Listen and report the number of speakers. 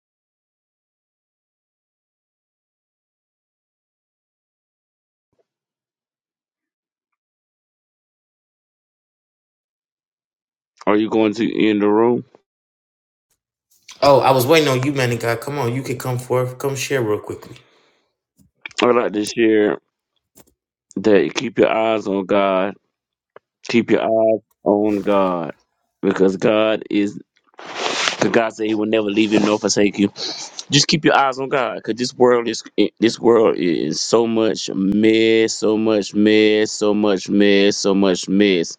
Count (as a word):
two